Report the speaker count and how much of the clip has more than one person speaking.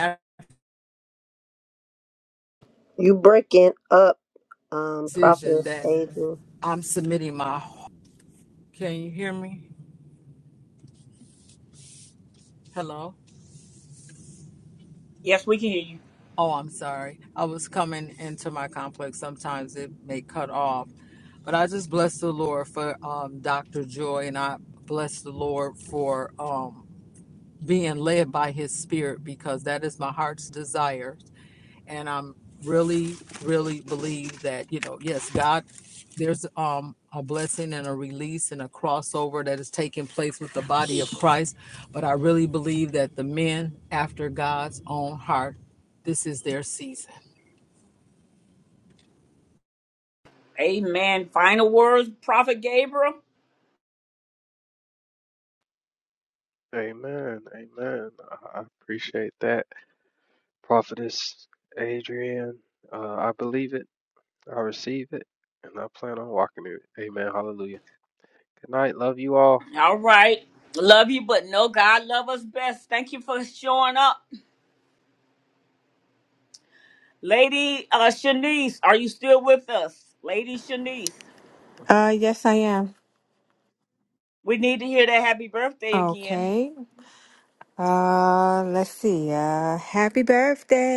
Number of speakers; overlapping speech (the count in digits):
5, about 1%